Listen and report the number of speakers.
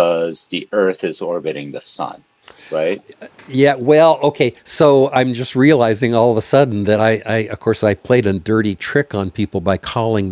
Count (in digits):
2